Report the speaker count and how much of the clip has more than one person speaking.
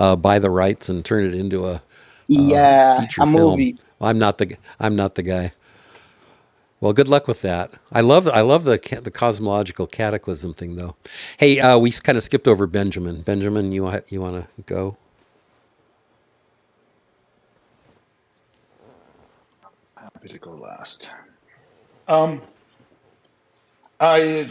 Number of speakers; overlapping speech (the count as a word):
three, about 3%